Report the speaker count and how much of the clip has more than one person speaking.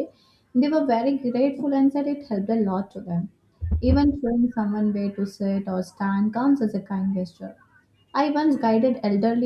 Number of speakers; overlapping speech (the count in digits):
1, no overlap